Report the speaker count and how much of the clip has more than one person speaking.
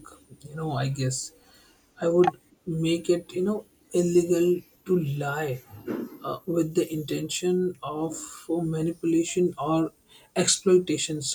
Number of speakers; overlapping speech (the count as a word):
one, no overlap